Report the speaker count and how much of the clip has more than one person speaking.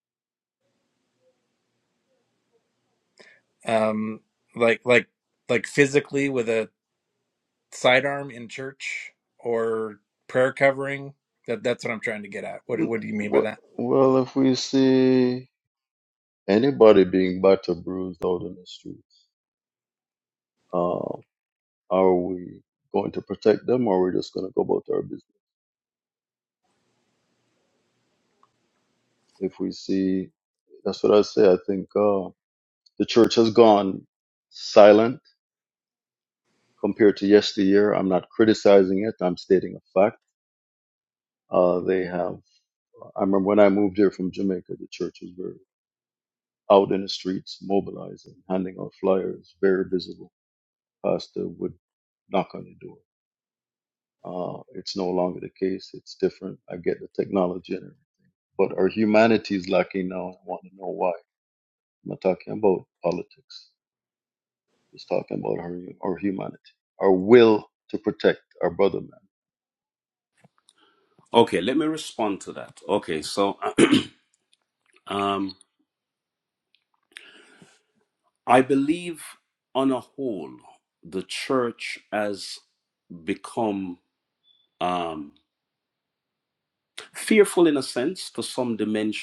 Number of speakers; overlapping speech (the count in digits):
3, under 1%